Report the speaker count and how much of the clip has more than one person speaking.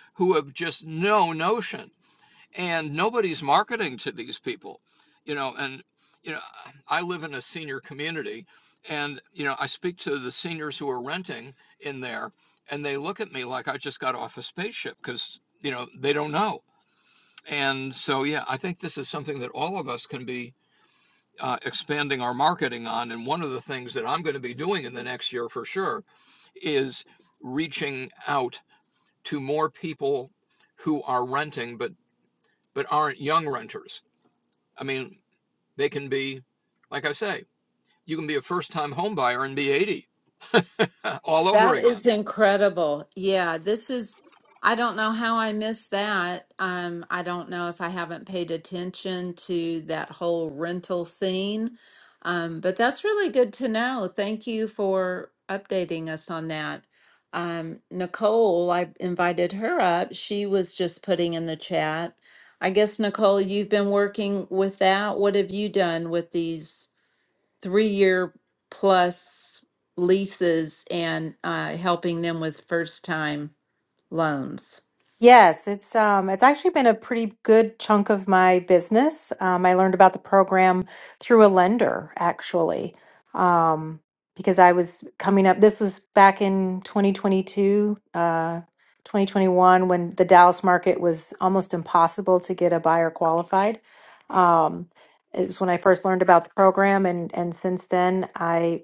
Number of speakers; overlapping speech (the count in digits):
3, about 1%